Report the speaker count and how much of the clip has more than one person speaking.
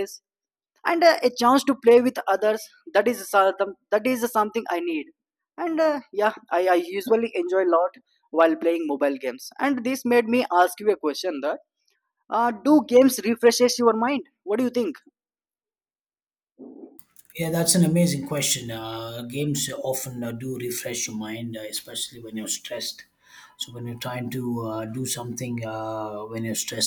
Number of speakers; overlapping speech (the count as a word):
two, no overlap